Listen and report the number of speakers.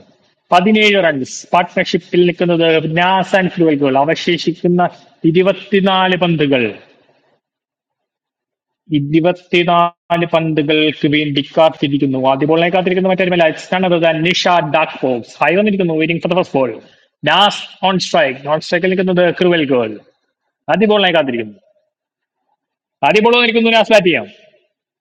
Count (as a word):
one